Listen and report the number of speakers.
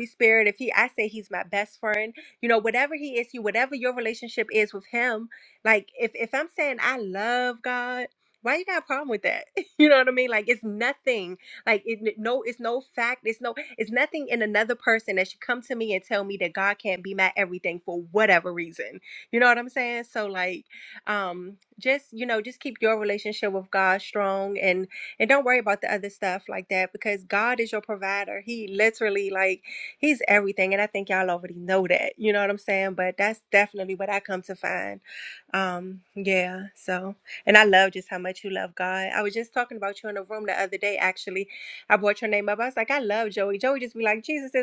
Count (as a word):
one